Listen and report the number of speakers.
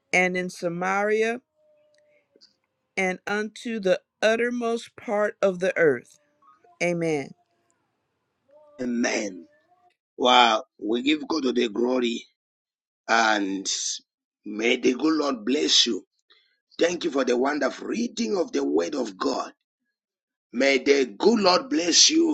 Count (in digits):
2